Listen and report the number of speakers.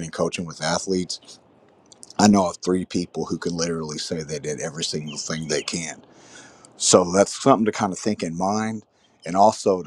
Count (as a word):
one